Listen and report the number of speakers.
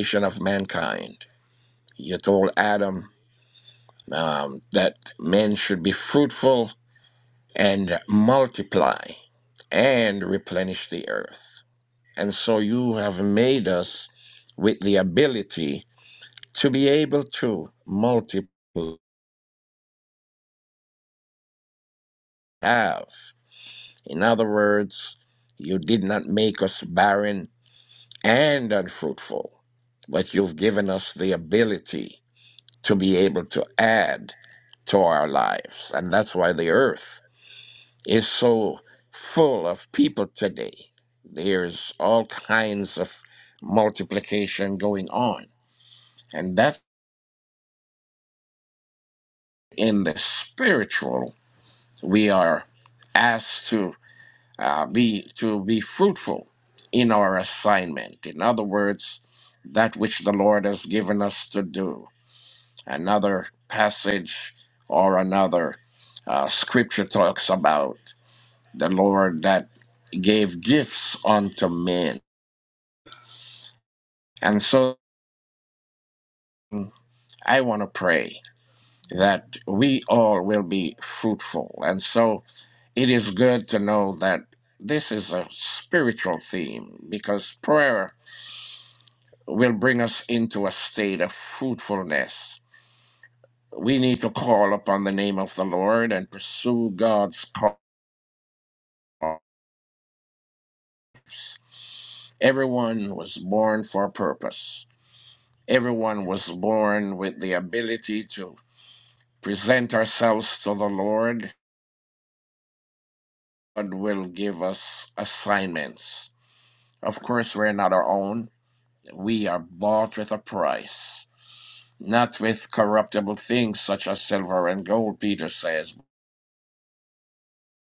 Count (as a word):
one